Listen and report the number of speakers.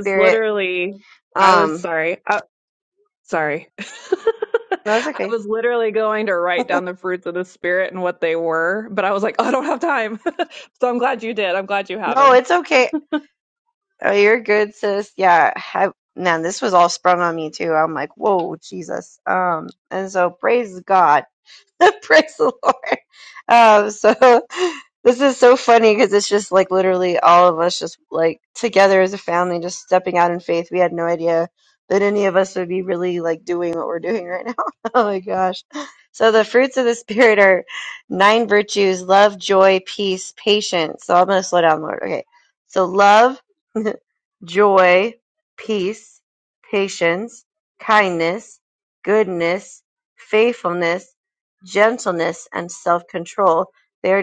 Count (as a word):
two